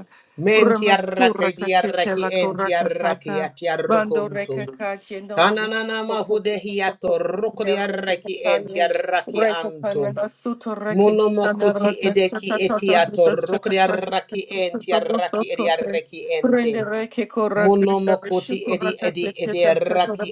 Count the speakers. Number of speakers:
2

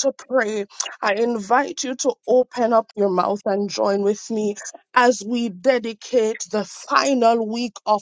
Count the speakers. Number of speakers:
1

